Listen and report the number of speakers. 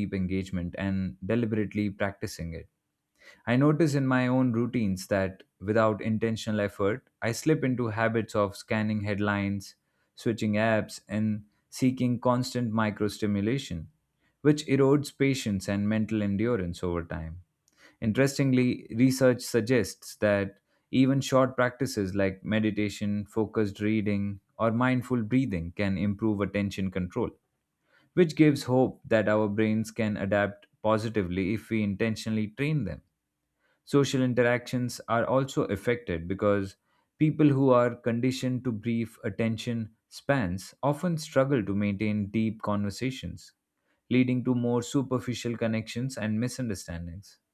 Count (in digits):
1